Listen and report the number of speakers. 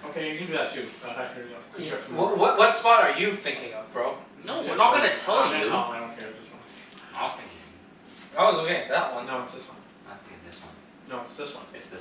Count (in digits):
3